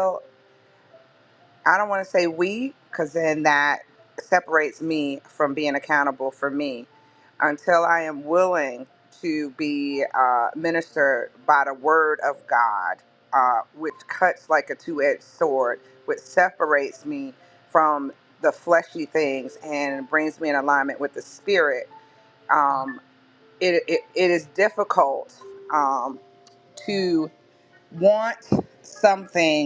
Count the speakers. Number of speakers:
one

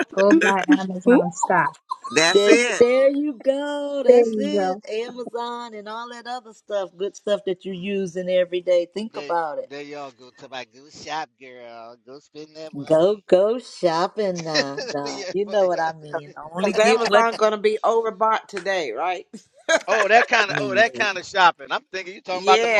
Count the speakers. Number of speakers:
four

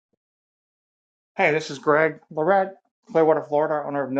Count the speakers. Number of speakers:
one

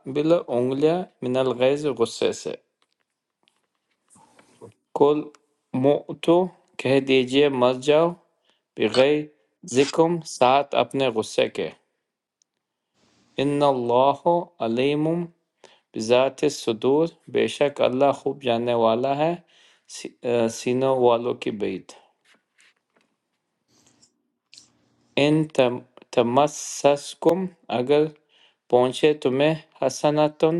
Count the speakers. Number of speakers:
one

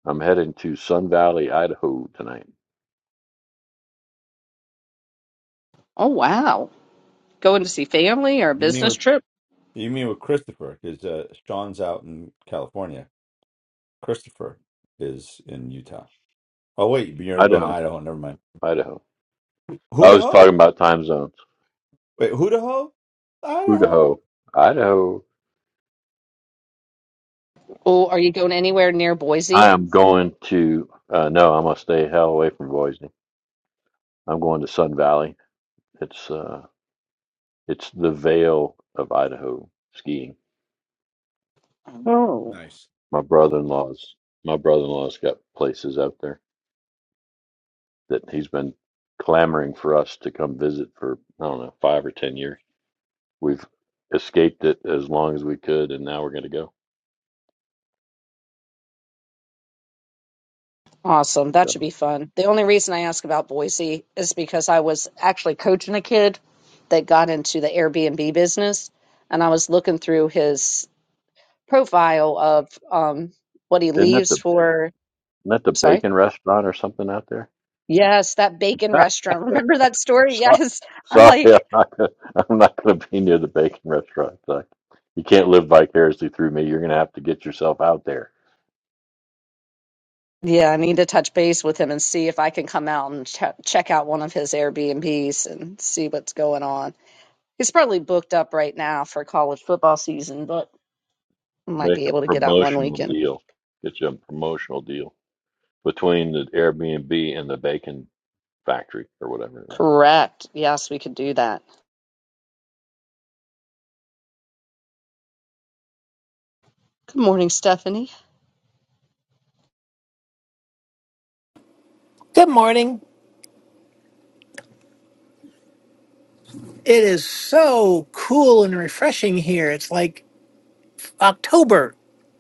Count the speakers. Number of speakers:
four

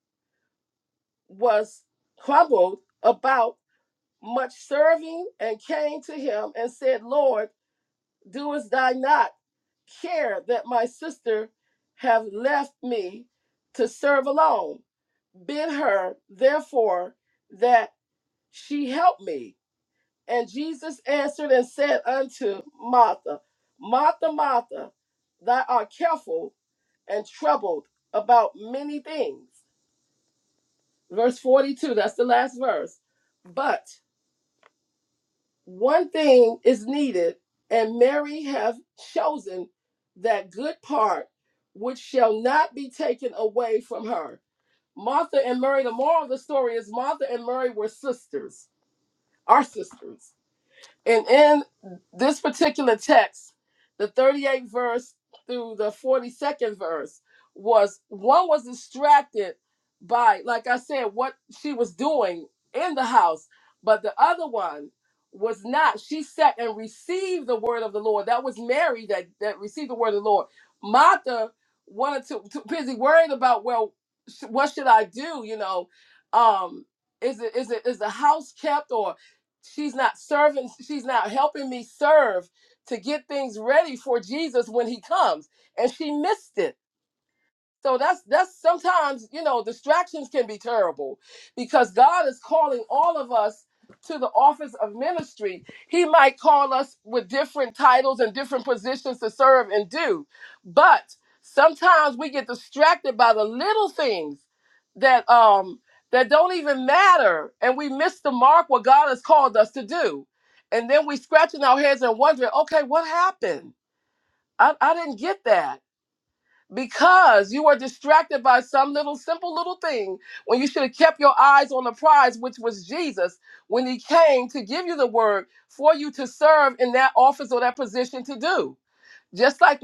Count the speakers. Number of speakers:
one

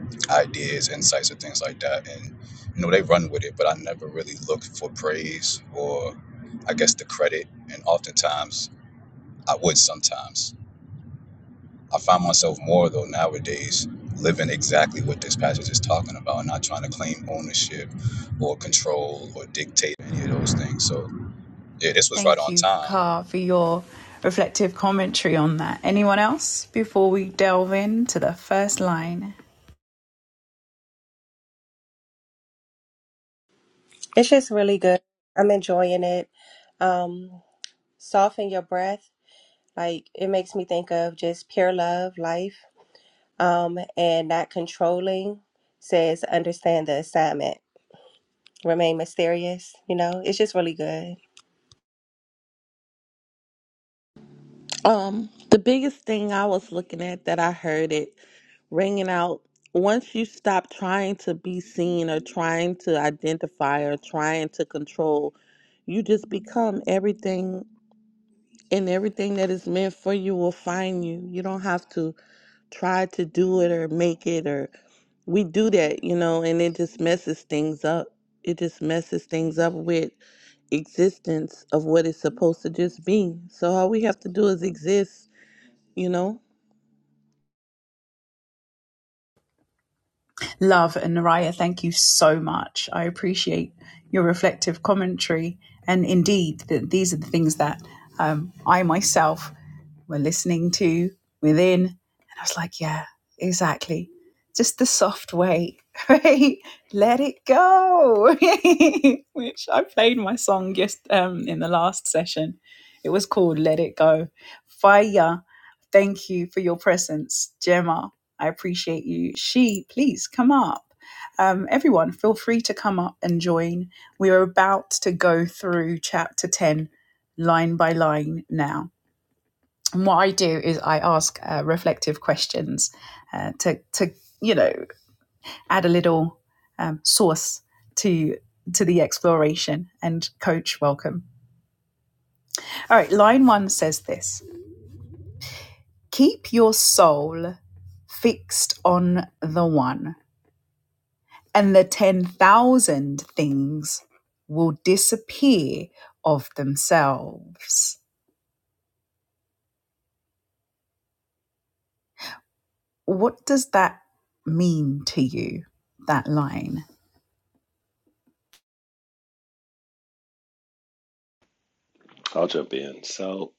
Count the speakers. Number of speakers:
five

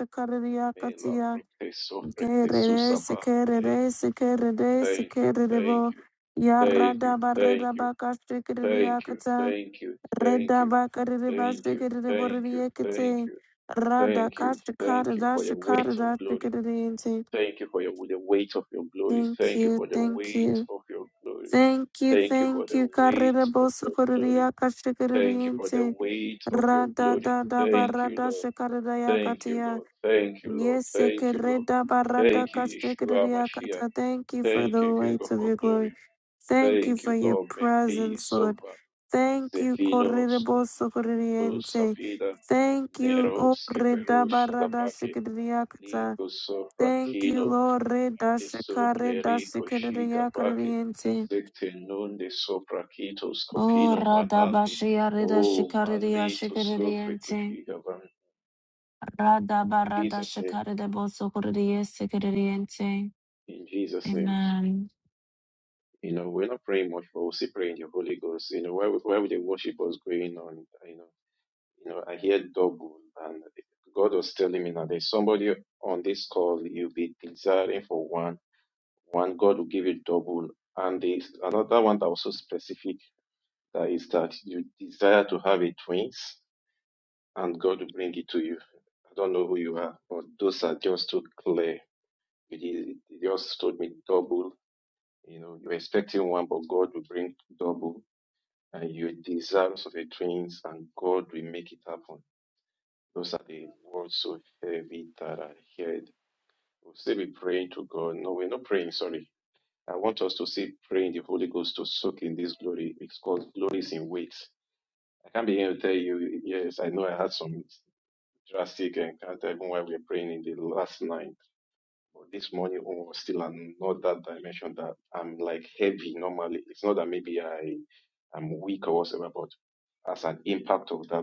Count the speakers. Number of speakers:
two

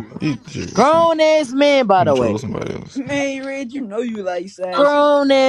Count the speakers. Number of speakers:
three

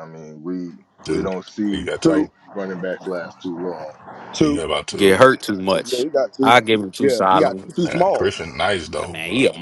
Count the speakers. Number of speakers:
four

